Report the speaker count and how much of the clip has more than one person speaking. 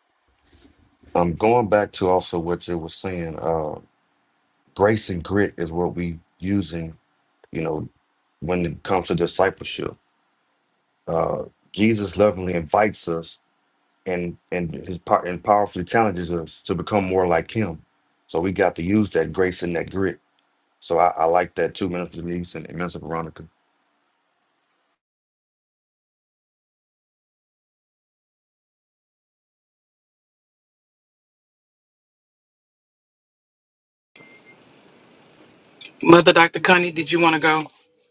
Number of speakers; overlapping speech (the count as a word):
two, no overlap